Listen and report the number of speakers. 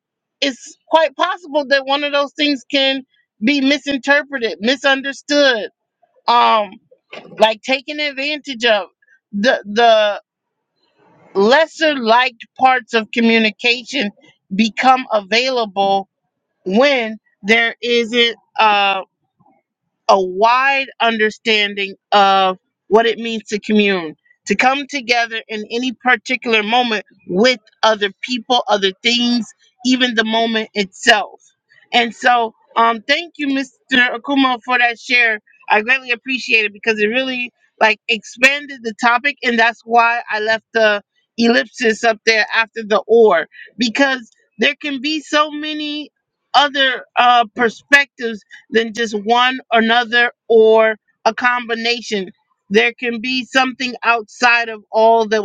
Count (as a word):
one